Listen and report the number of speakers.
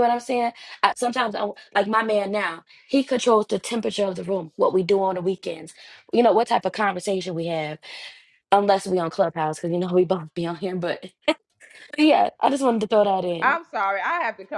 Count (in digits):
2